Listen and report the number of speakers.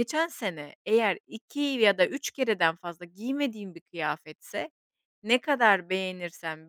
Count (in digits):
1